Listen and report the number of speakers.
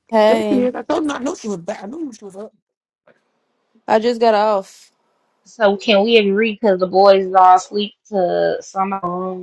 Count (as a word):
three